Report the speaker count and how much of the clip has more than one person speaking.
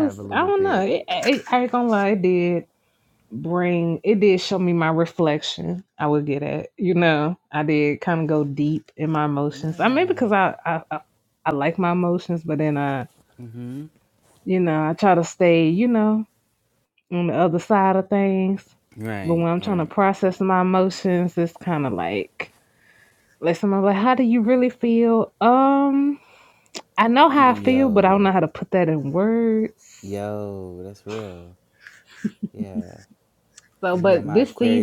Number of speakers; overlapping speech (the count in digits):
2, about 12%